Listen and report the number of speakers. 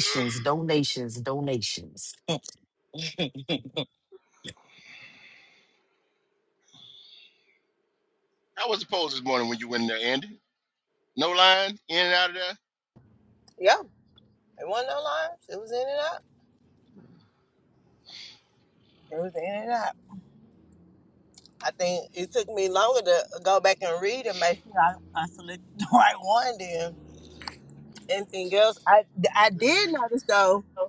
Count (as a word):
three